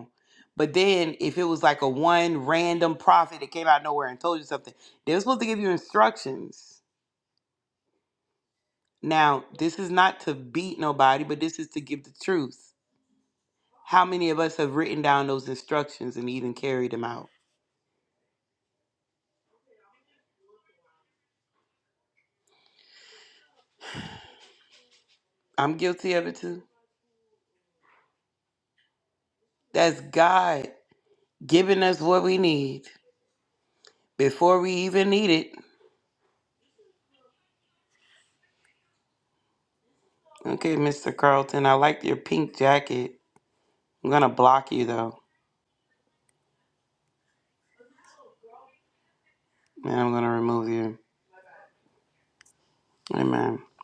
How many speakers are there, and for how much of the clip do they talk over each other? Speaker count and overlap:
1, no overlap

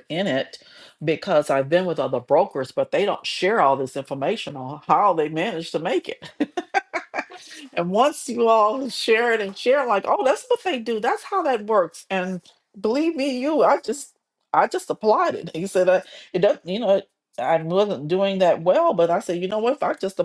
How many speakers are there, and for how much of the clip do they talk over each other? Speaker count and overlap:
1, no overlap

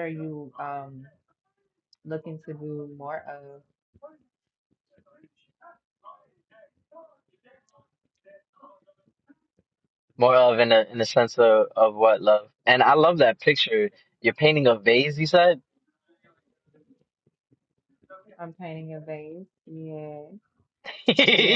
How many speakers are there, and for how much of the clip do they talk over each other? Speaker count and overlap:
2, about 1%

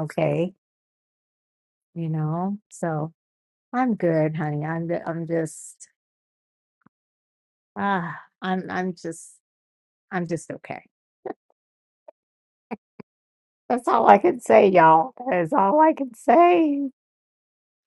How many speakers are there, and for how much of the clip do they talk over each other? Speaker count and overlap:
1, no overlap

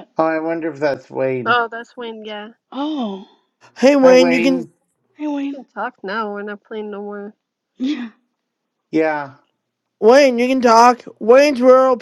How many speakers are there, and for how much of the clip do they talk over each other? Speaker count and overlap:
4, about 8%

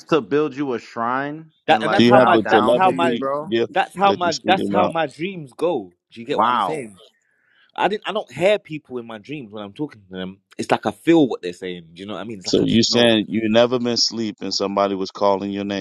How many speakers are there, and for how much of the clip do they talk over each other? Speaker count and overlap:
3, about 26%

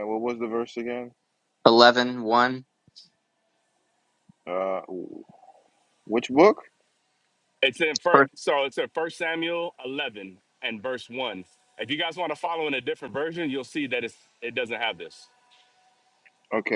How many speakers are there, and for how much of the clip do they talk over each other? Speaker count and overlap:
3, about 1%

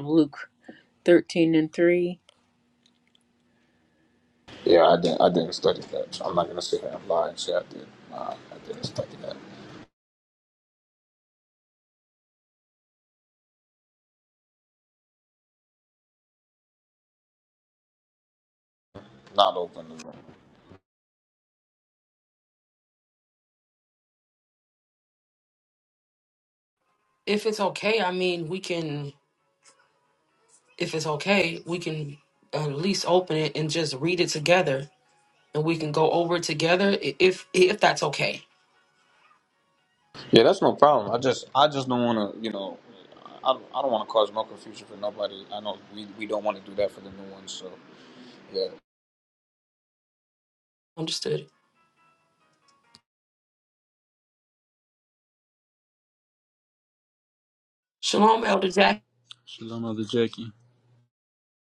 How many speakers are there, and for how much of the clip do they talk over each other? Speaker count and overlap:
4, no overlap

